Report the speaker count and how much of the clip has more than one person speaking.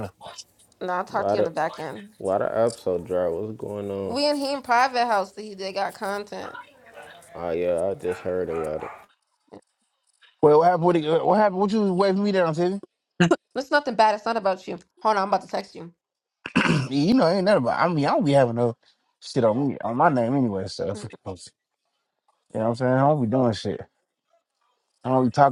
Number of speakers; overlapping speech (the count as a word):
three, about 2%